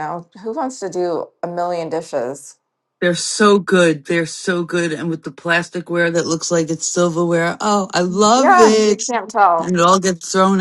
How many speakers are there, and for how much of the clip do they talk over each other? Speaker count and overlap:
two, about 7%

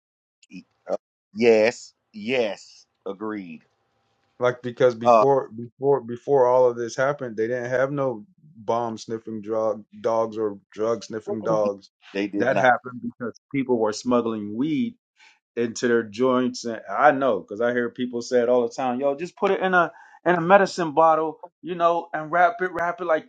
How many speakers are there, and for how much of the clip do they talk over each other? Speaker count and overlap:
two, about 2%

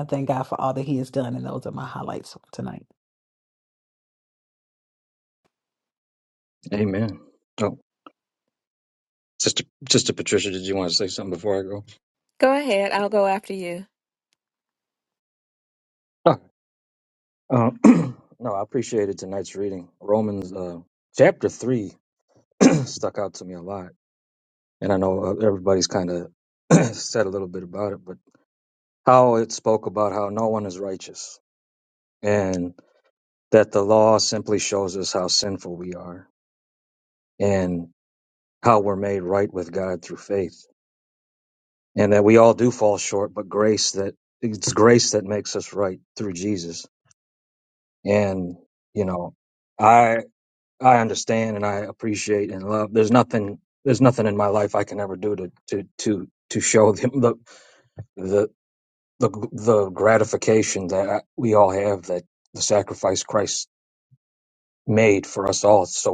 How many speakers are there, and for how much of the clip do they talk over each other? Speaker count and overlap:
three, no overlap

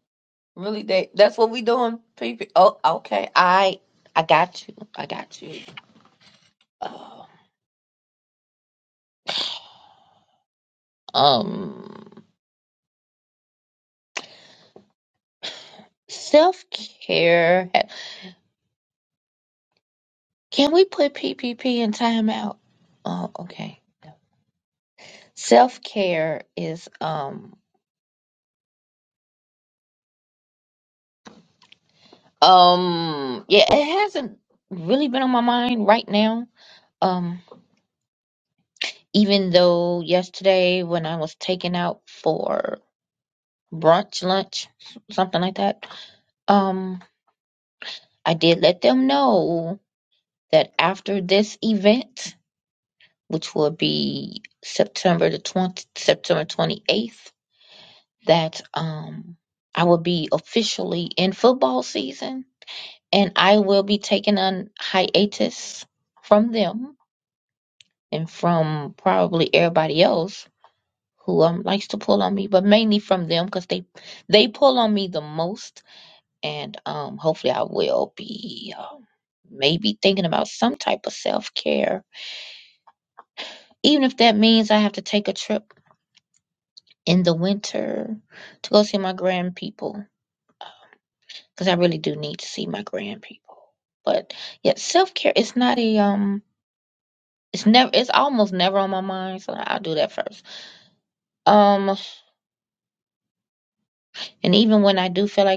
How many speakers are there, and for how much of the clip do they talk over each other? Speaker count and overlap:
one, no overlap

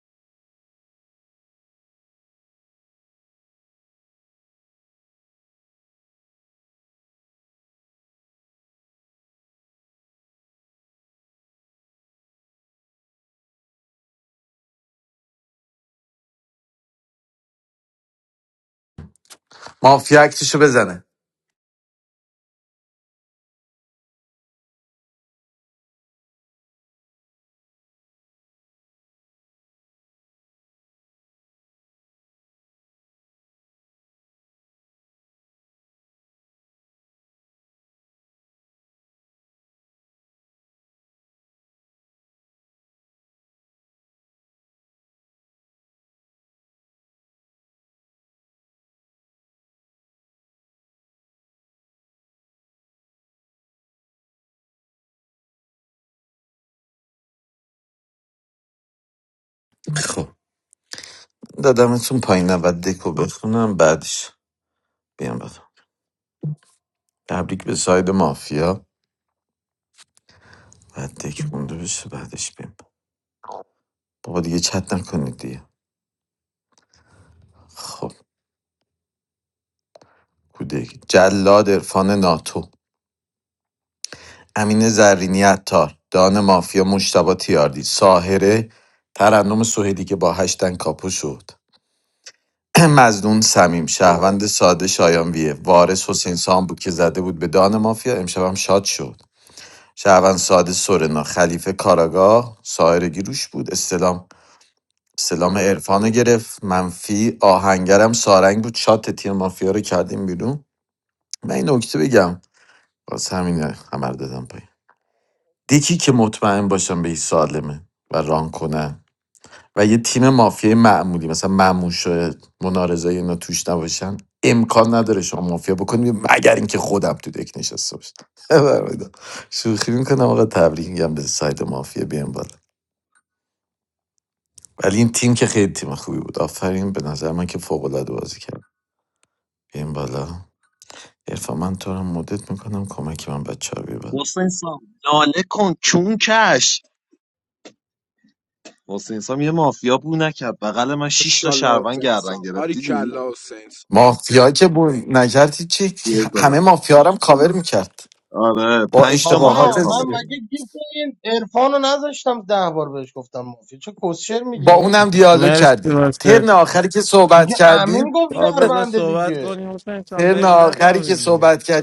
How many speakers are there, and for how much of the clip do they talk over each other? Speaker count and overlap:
five, about 5%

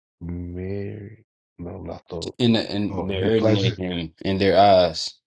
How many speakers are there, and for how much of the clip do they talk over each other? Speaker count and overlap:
two, about 16%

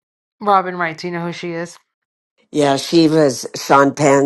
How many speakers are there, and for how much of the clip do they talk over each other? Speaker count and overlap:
two, no overlap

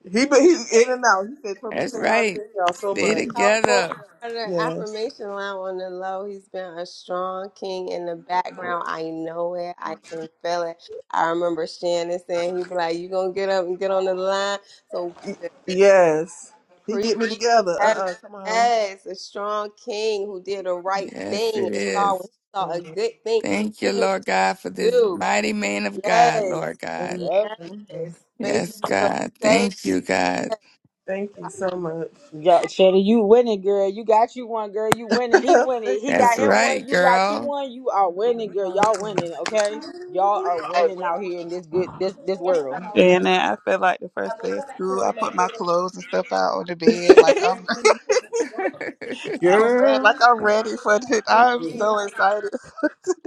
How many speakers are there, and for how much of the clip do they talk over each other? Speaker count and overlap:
five, about 20%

